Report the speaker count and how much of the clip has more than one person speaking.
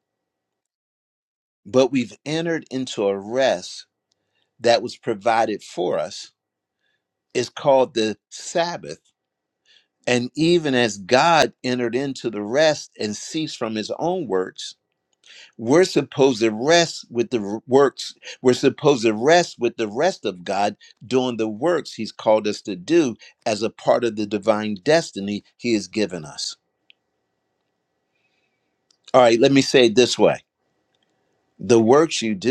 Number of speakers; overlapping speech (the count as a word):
one, no overlap